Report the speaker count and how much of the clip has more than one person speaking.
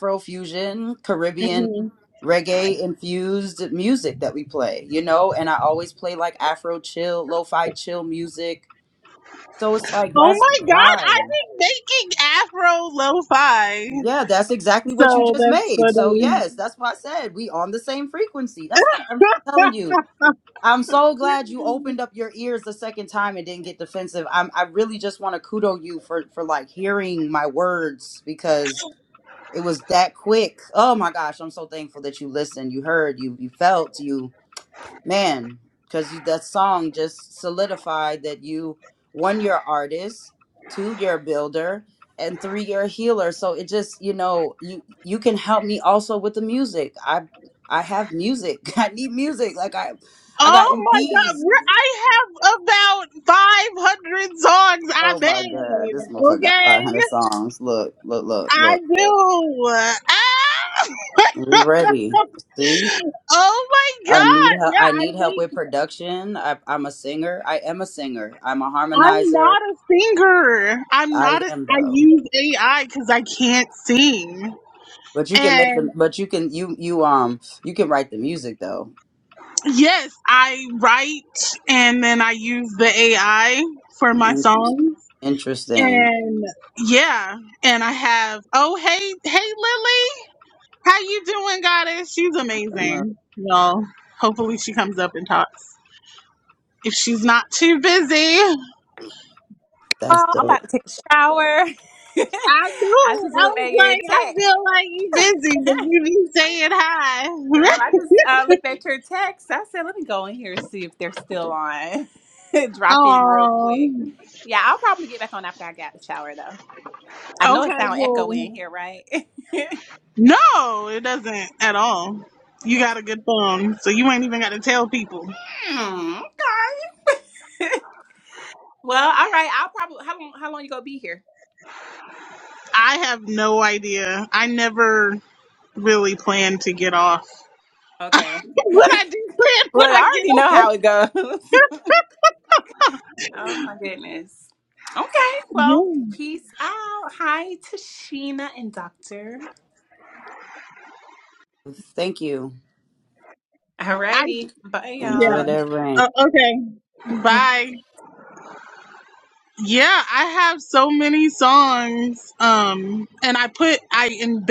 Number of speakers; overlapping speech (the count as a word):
three, about 10%